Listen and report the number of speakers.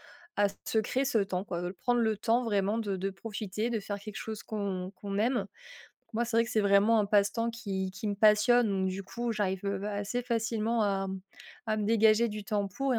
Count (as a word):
one